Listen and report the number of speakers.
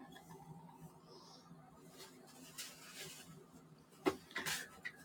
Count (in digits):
0